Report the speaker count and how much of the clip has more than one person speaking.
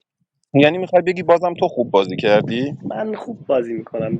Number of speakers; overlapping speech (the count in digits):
2, no overlap